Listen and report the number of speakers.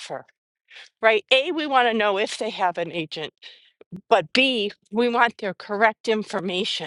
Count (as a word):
one